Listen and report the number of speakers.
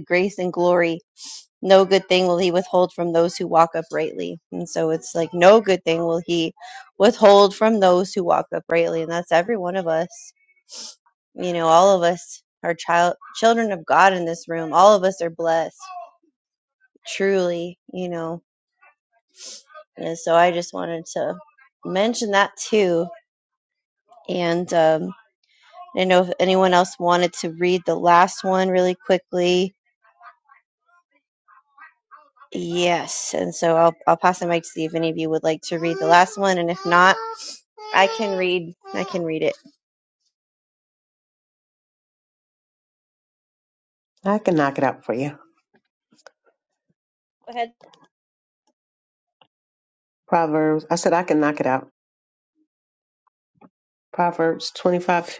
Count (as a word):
two